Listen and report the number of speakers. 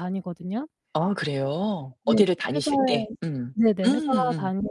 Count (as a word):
two